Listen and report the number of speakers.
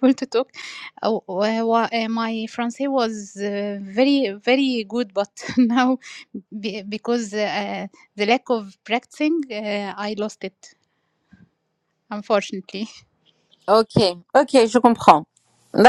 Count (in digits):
2